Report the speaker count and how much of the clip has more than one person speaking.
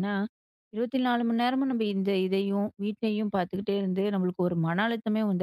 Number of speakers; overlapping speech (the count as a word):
one, no overlap